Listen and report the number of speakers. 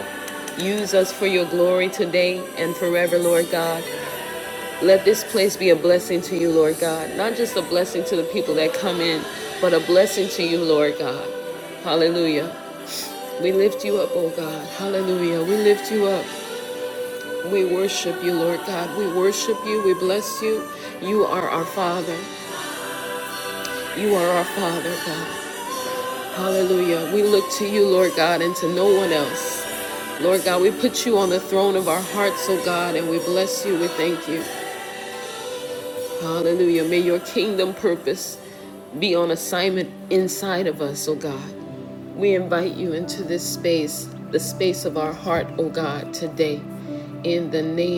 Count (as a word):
one